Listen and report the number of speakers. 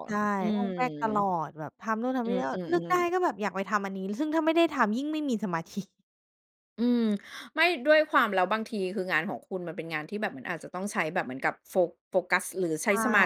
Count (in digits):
2